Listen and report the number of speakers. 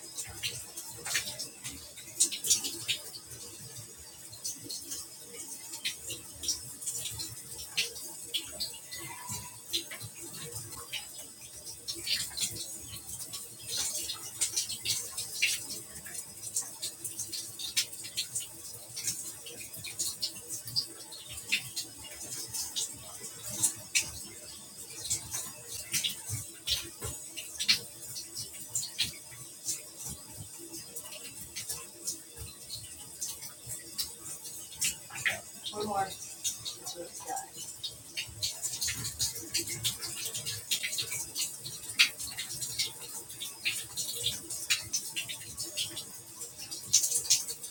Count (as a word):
zero